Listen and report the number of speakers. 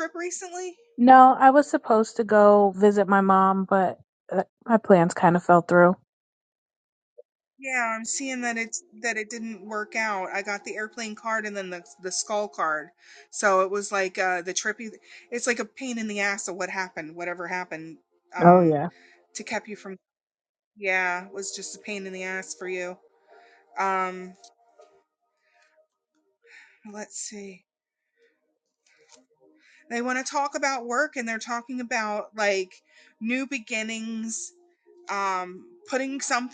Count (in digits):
2